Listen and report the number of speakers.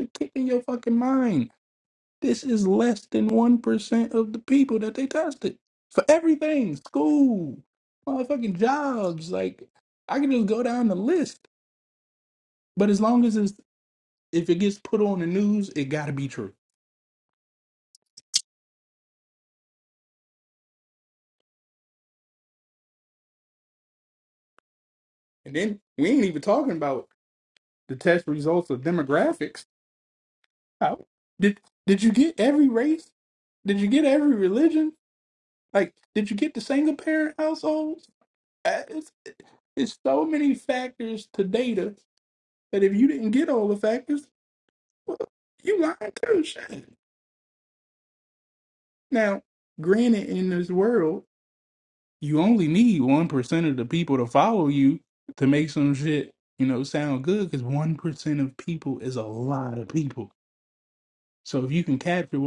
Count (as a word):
one